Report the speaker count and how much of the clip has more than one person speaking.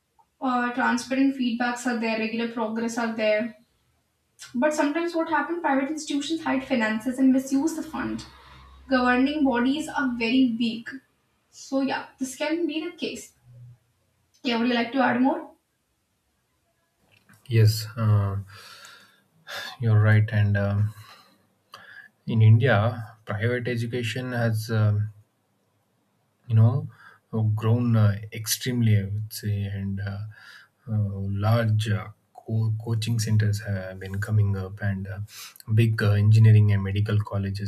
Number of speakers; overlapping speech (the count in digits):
2, no overlap